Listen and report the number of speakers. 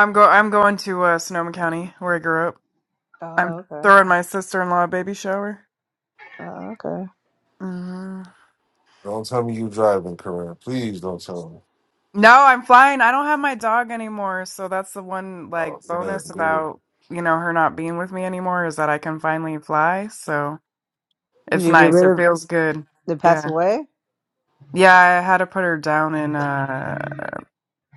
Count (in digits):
3